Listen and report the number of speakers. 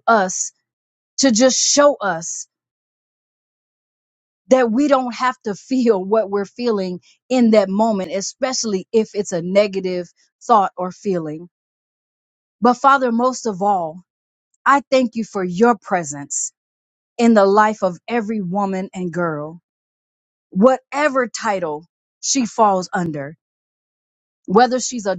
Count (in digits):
1